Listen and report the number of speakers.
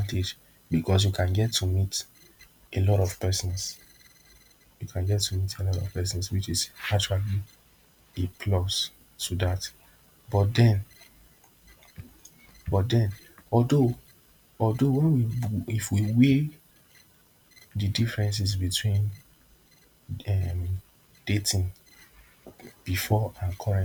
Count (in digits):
1